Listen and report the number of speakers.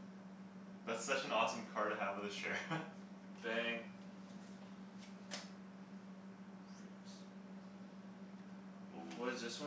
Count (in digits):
2